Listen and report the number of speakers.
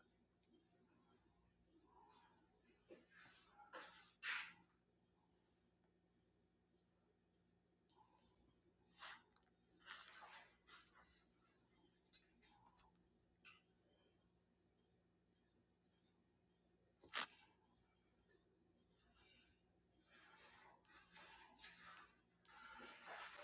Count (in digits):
0